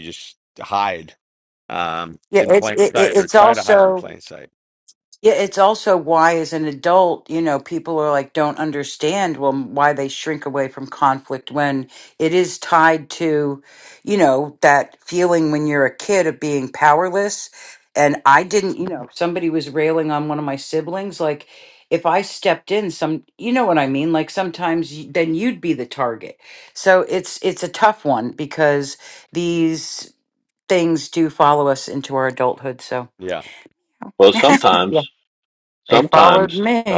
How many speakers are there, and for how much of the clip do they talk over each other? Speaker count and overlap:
three, about 8%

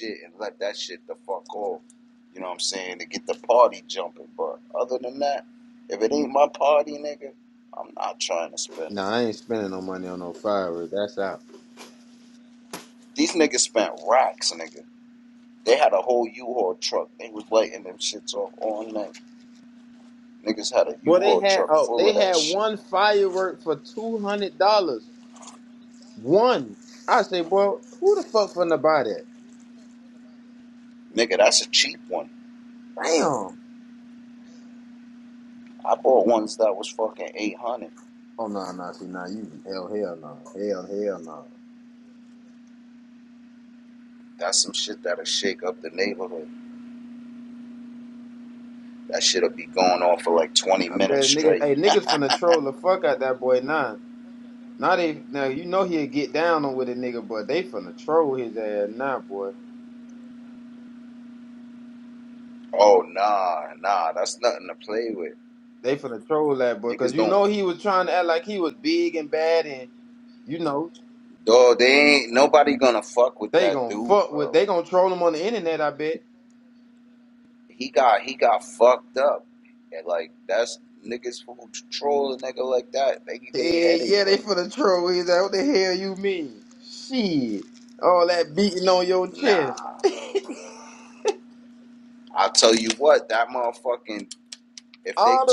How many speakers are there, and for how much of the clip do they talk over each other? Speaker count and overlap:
two, about 6%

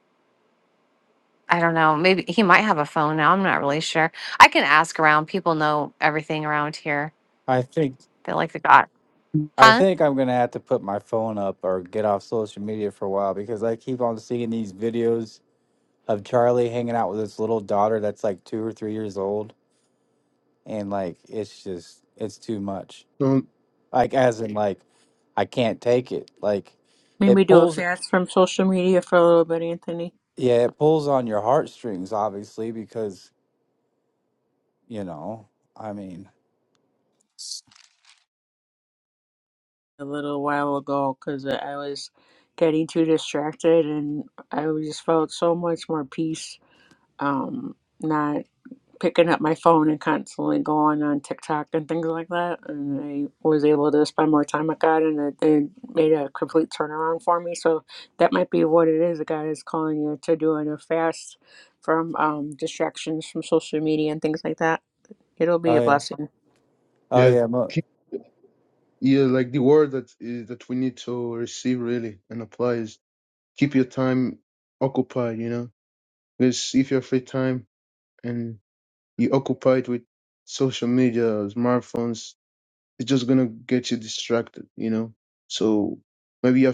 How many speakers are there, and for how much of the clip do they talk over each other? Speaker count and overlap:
four, about 2%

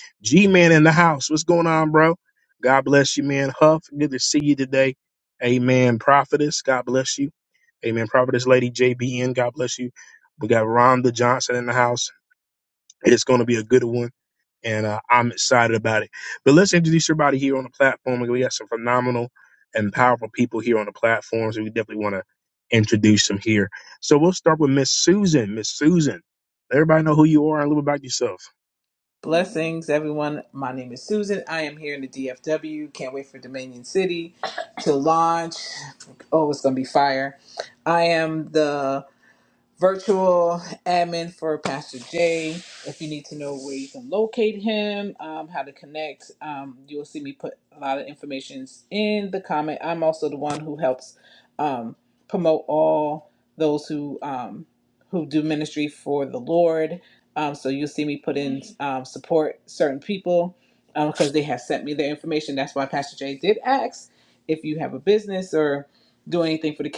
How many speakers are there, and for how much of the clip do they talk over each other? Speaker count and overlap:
two, no overlap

